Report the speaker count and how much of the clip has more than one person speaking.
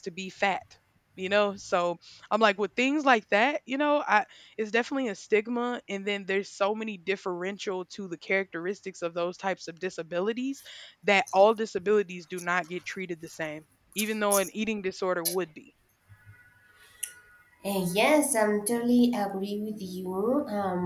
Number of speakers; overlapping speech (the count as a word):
two, no overlap